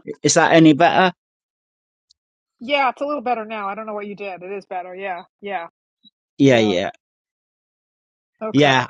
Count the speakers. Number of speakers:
two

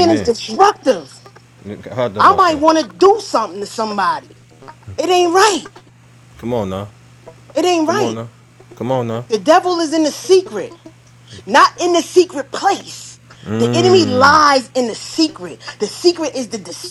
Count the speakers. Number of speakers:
two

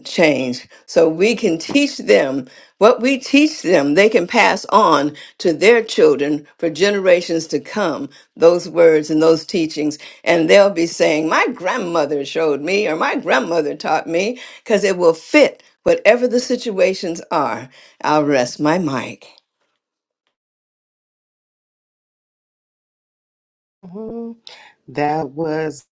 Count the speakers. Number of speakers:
two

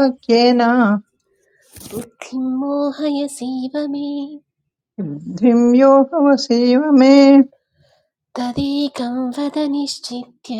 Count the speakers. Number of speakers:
two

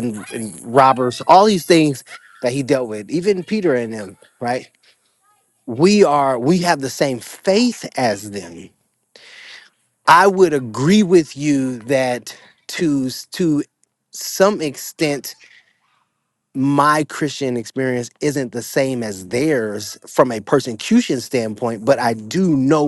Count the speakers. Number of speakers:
one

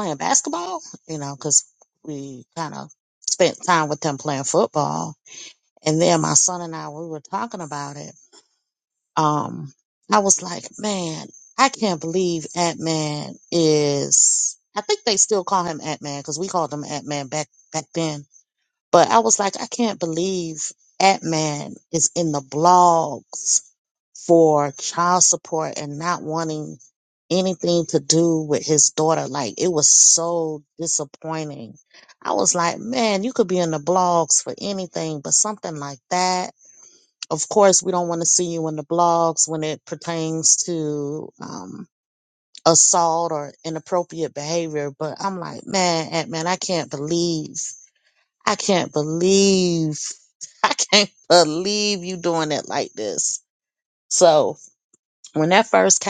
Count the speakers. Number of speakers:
one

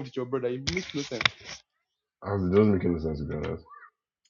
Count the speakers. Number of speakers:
two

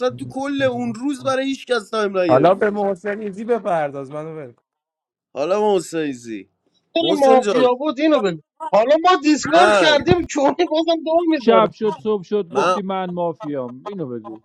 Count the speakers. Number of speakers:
four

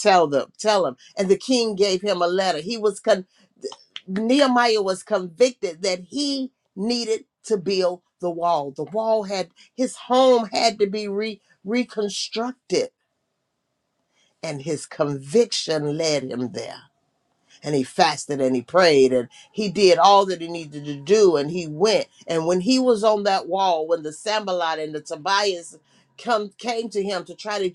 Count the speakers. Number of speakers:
one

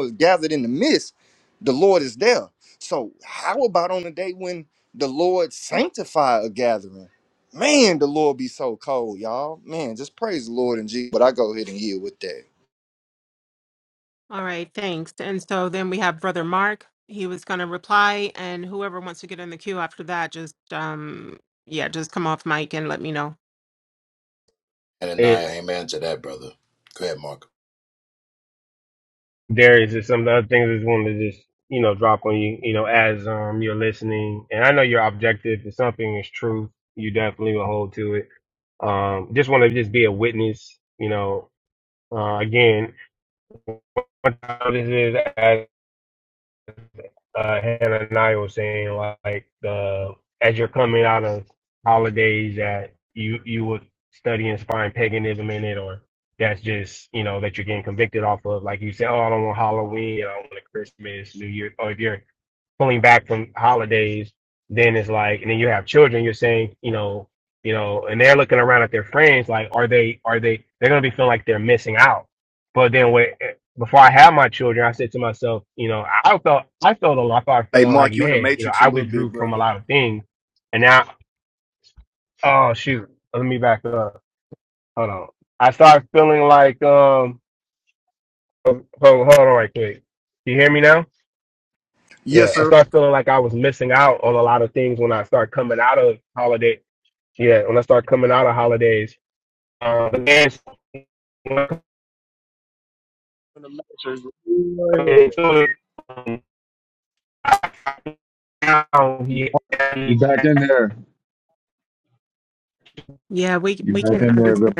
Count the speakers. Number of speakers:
six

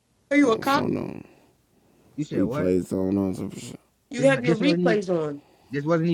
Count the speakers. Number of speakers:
three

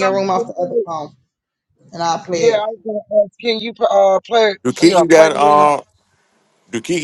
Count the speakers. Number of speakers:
three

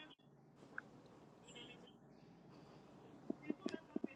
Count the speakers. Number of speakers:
zero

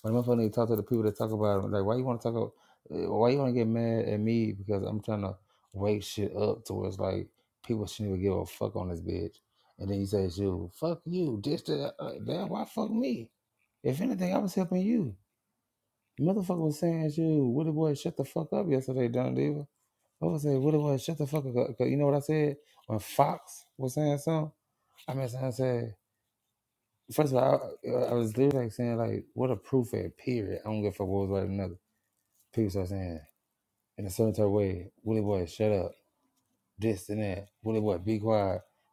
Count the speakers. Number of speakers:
one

